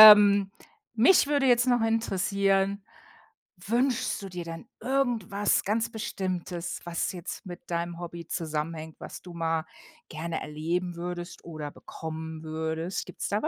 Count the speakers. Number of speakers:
one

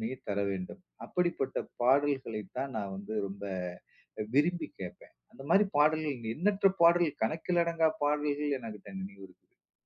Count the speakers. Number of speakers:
one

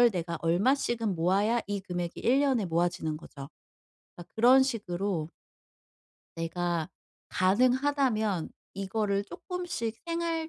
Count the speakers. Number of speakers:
one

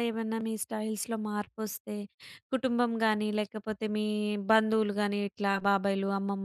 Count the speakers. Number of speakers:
one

